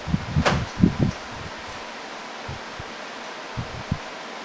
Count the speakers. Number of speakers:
0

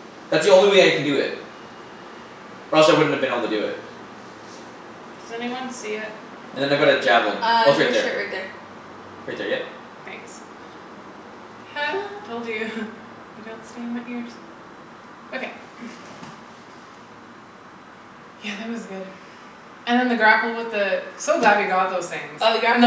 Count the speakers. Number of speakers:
3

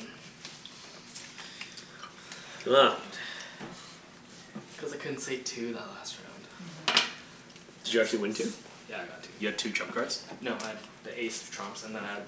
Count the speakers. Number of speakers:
2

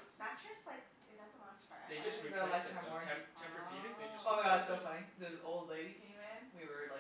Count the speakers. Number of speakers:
3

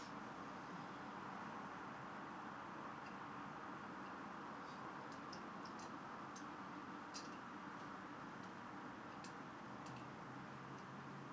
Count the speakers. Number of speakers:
0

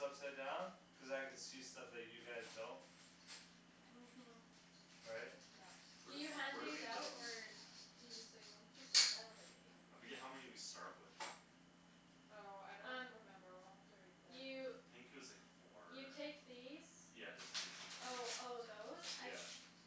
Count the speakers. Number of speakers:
4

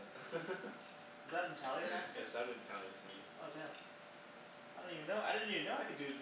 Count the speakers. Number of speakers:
2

